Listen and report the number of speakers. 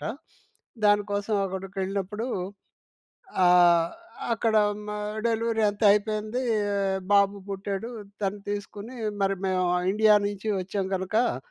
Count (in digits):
1